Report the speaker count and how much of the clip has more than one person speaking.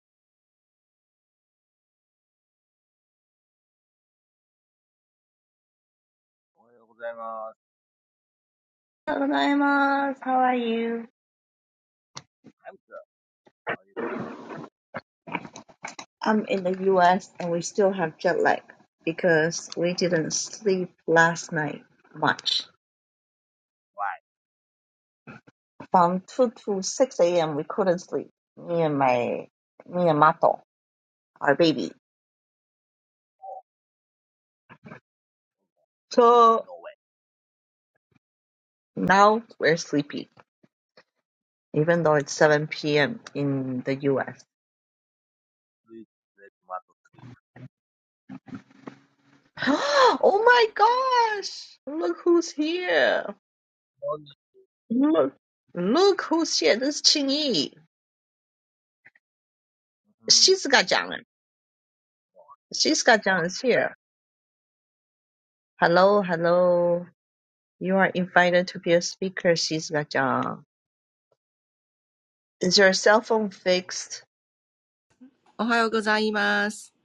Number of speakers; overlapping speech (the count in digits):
3, about 1%